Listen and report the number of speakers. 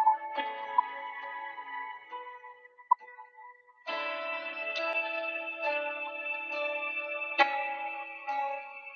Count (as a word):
zero